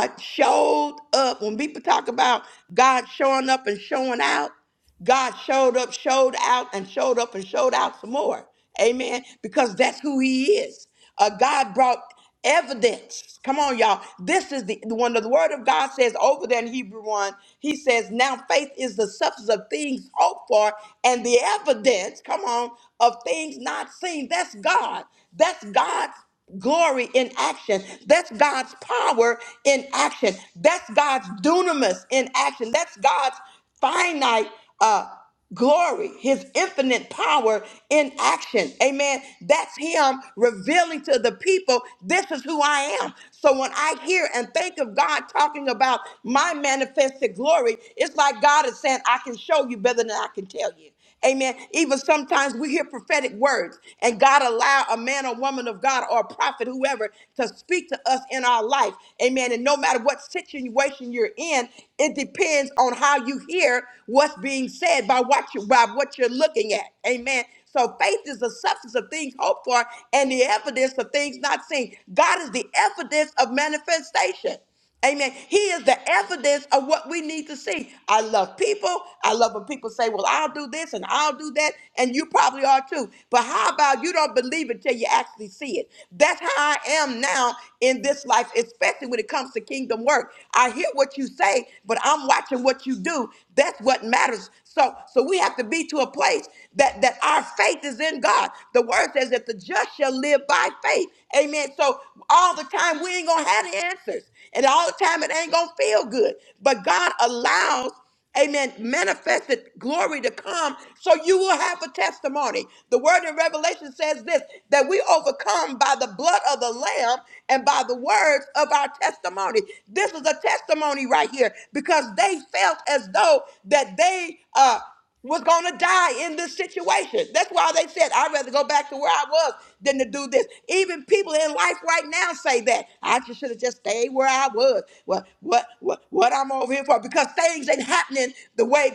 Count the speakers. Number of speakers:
one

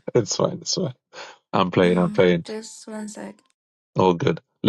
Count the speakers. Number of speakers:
two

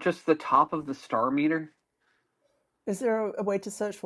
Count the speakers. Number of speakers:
two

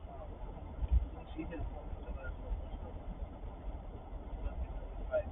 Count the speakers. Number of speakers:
zero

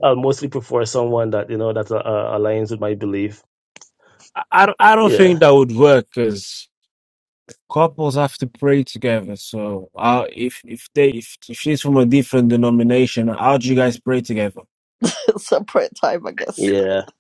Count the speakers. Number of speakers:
three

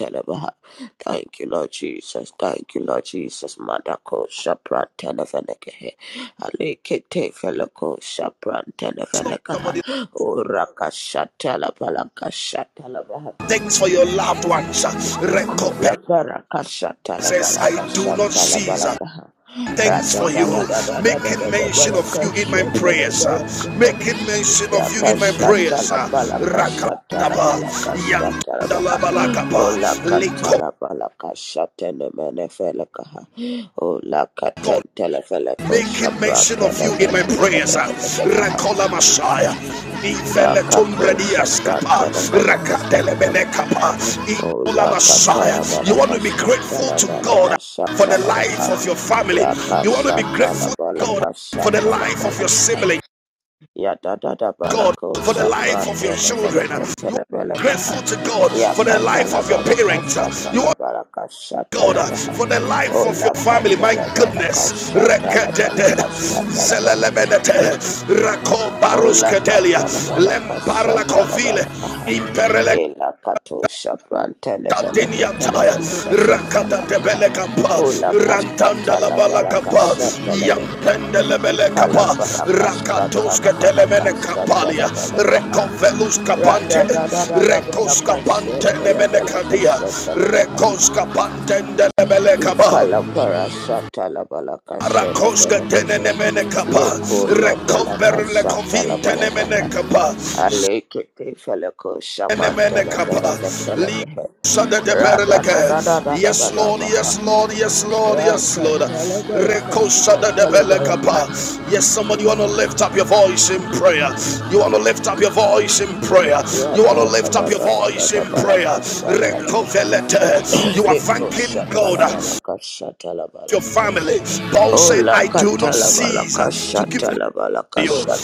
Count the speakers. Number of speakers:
two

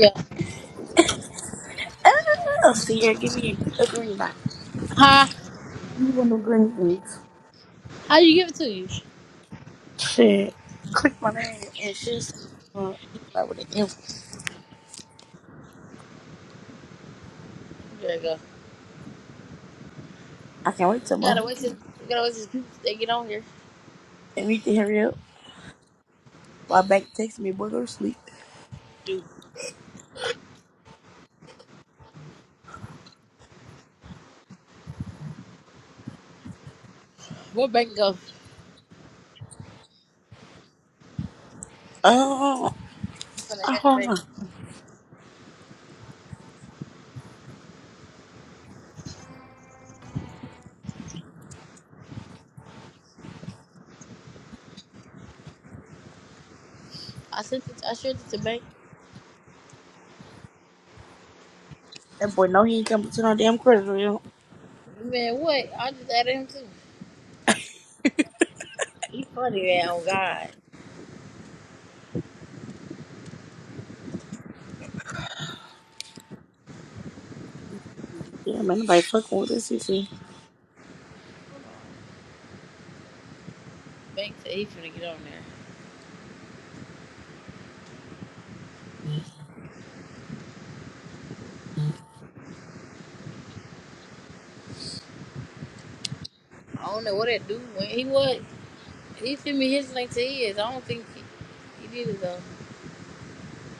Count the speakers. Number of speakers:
two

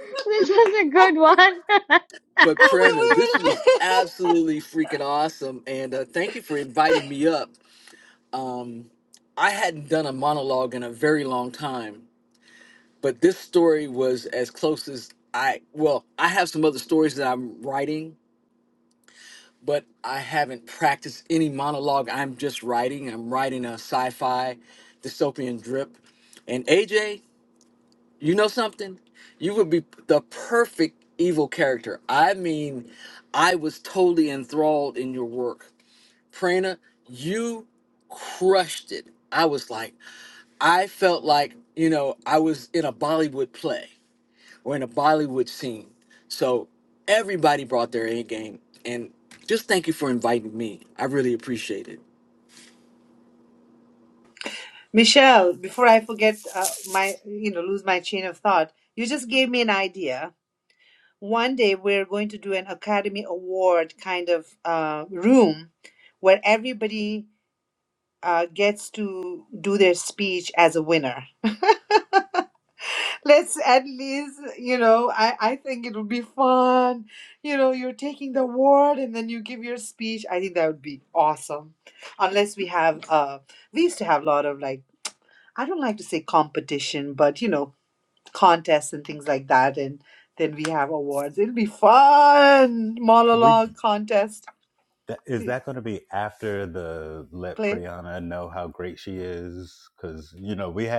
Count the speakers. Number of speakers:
four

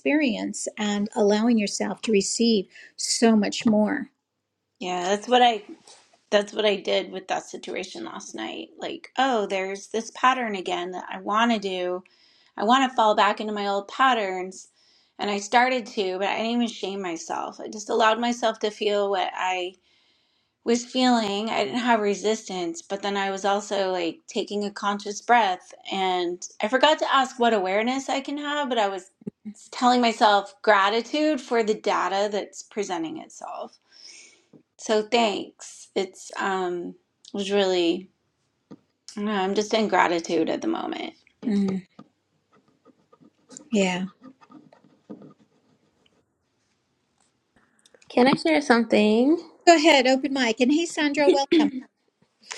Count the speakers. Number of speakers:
three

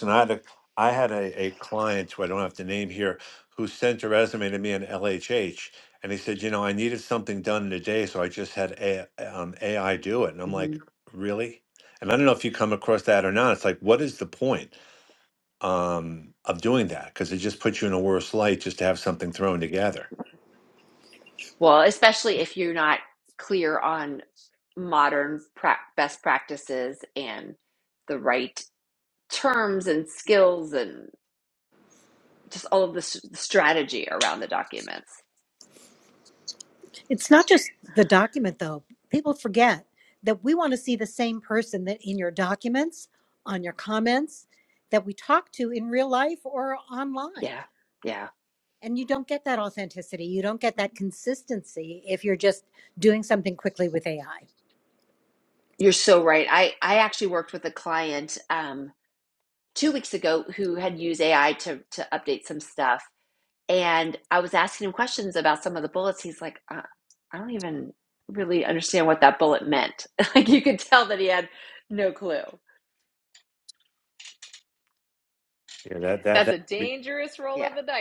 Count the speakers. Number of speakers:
four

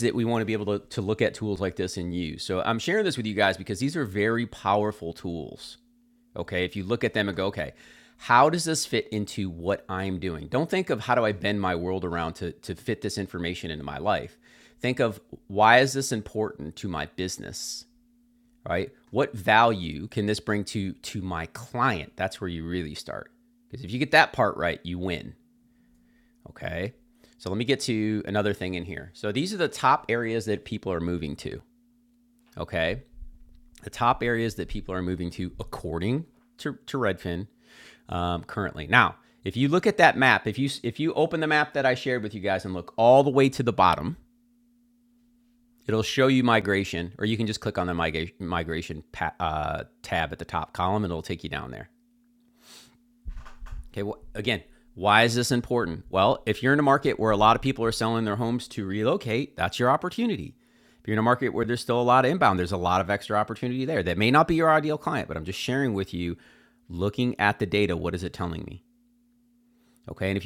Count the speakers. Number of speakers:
one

